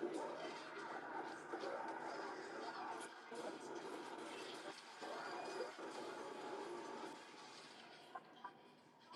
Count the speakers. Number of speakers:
0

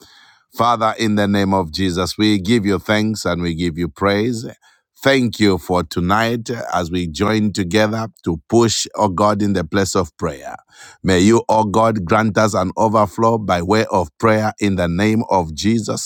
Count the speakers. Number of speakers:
1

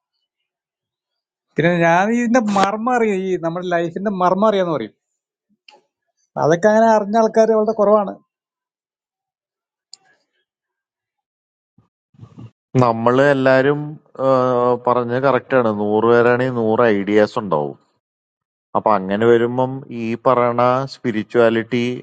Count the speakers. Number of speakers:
2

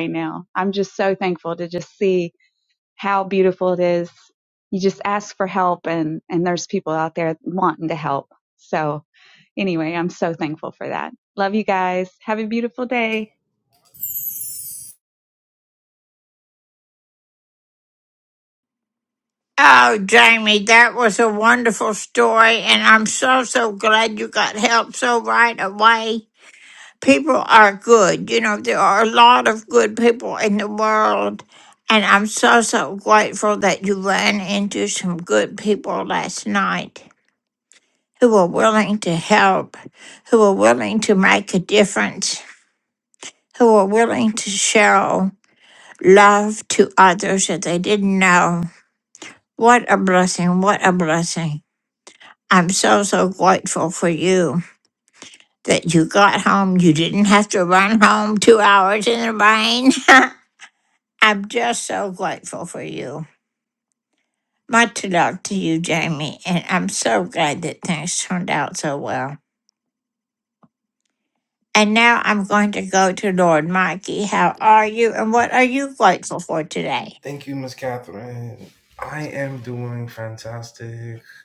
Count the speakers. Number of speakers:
3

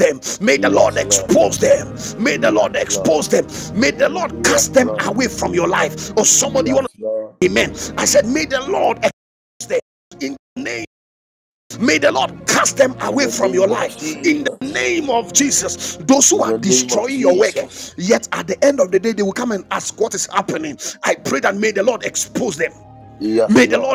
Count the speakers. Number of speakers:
2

